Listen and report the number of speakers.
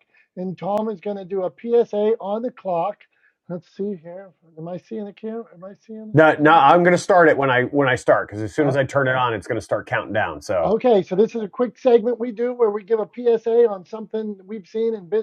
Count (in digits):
2